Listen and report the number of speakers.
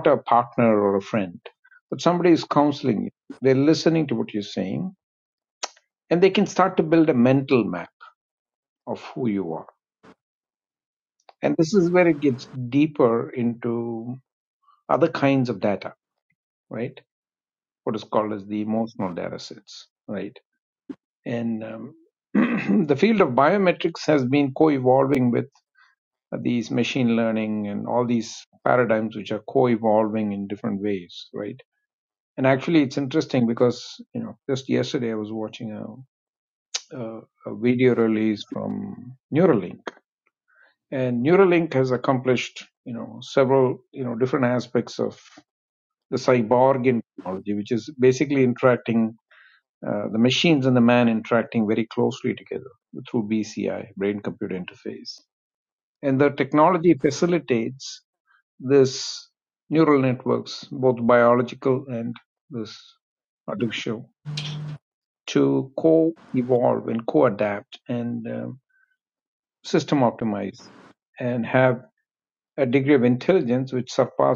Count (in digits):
1